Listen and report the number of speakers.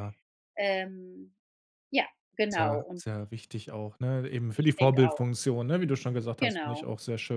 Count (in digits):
2